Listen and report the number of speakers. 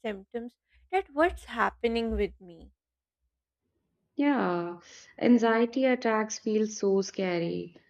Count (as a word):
two